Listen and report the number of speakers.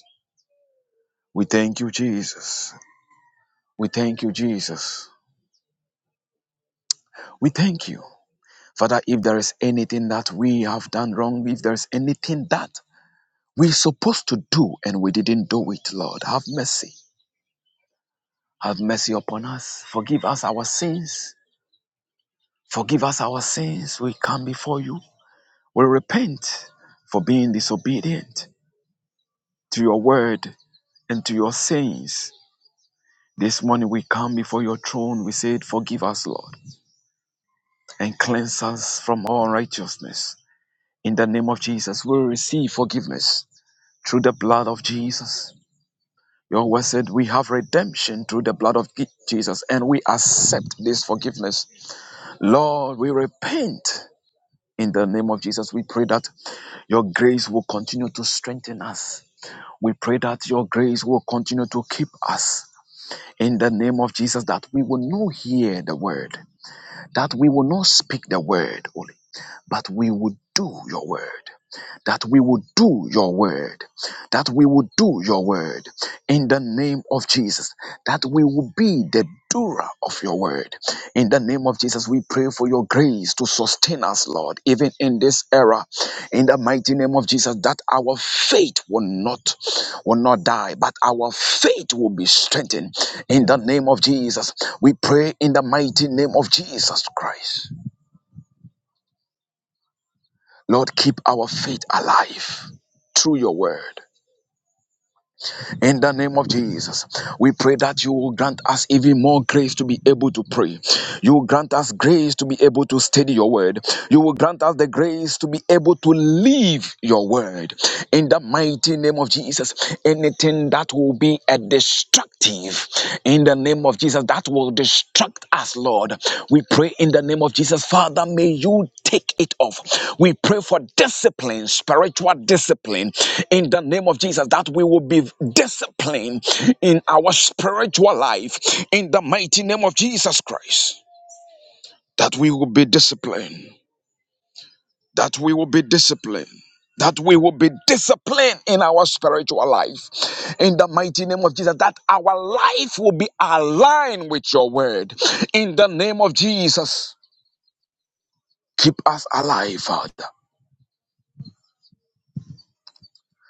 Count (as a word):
one